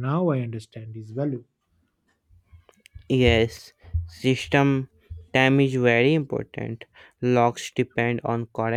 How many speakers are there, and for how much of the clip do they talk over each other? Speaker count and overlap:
two, no overlap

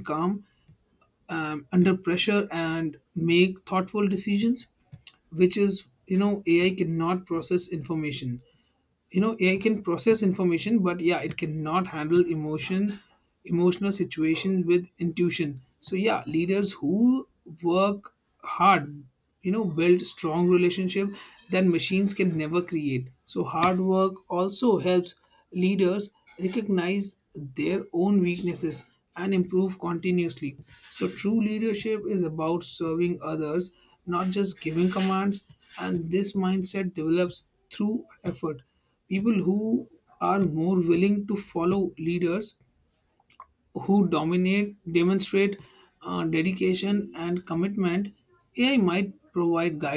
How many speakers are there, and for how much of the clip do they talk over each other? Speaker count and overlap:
one, no overlap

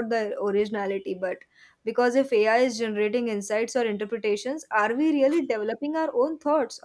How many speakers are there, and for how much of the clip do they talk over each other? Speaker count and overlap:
one, no overlap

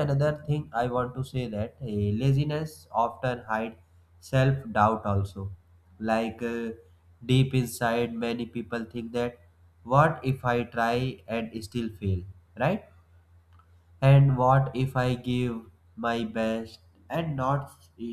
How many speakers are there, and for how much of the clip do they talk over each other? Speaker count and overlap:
one, no overlap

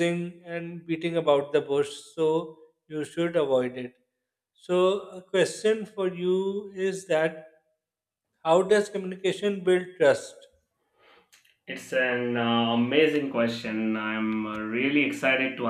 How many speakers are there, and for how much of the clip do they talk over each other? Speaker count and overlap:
two, no overlap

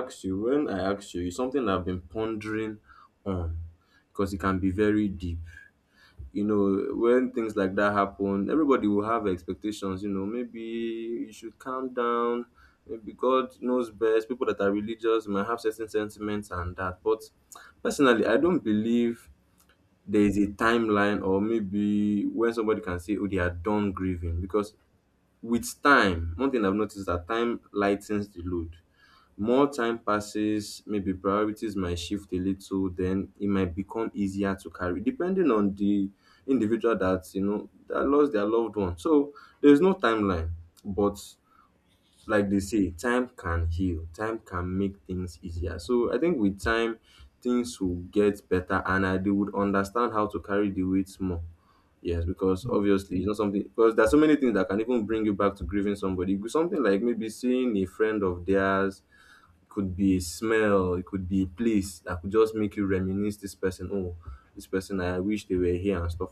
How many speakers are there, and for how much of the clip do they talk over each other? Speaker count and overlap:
one, no overlap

